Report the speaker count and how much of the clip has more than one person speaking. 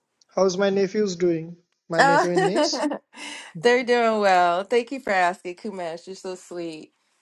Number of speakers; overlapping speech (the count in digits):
2, about 5%